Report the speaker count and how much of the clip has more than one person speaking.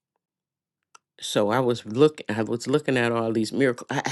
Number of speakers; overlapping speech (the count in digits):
1, no overlap